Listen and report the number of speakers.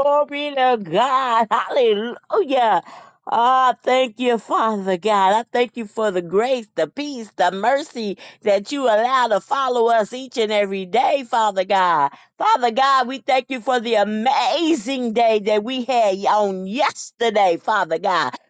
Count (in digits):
1